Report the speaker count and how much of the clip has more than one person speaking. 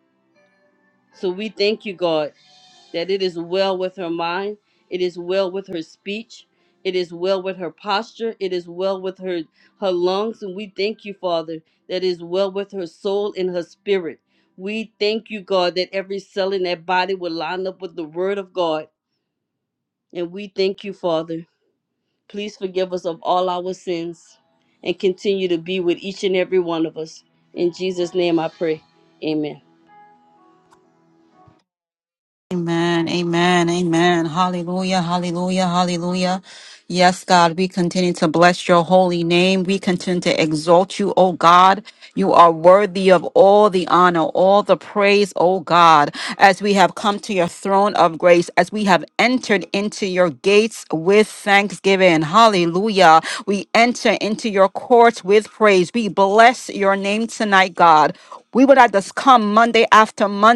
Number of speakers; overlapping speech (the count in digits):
2, no overlap